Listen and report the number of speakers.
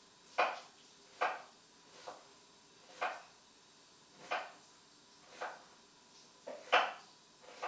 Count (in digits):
0